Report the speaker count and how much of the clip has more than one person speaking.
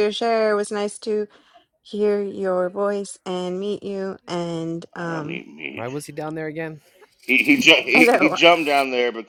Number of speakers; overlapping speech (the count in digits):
3, about 12%